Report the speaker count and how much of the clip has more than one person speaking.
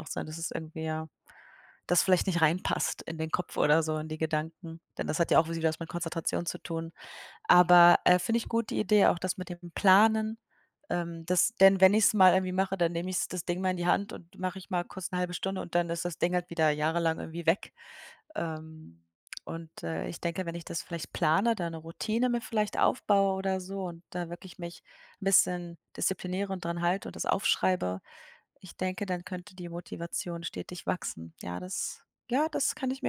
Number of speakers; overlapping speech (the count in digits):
1, no overlap